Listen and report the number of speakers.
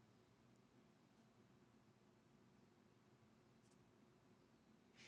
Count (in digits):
0